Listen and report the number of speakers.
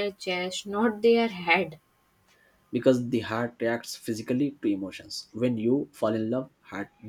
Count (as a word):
two